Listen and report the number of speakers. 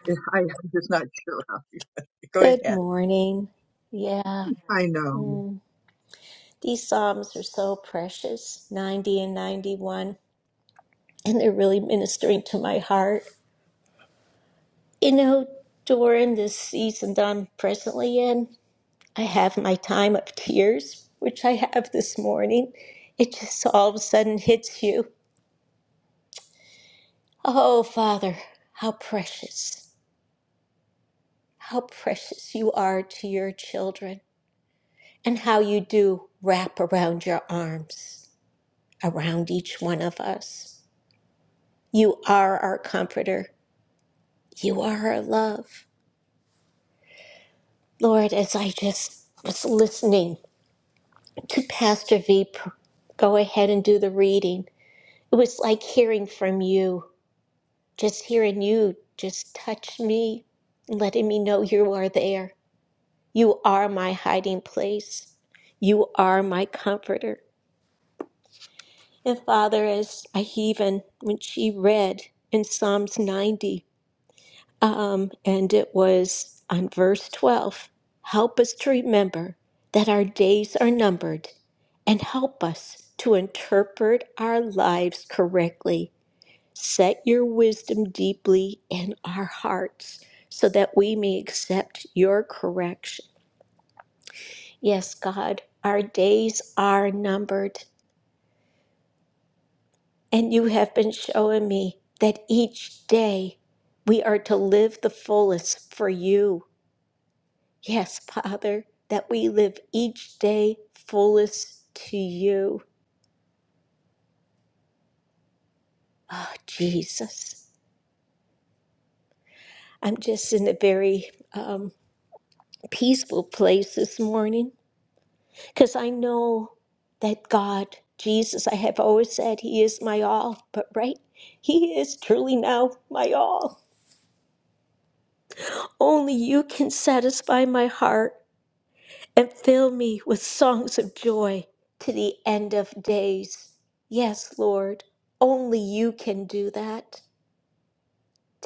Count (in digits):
2